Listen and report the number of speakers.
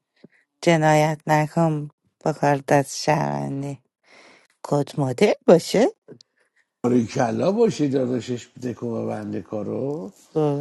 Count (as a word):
two